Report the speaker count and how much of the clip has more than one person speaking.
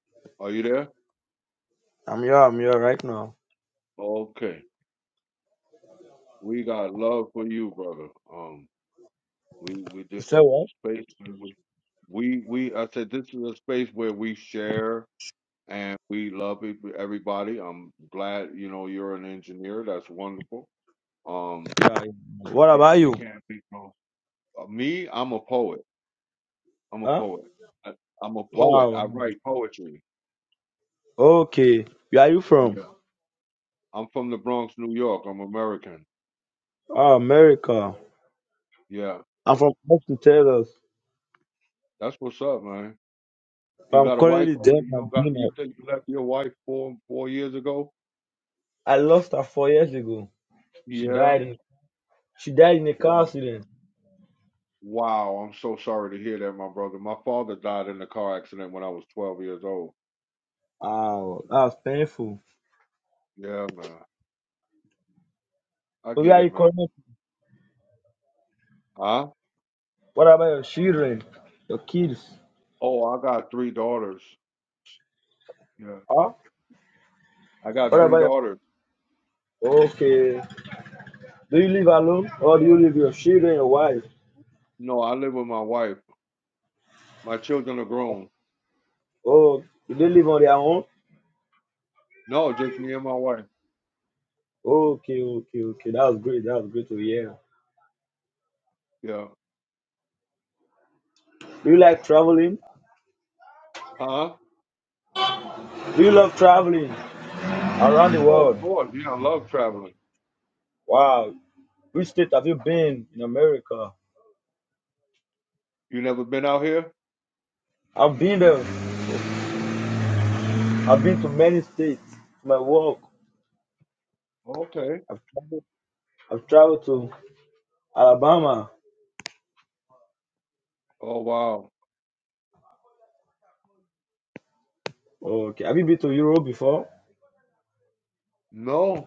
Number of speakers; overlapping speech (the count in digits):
2, about 4%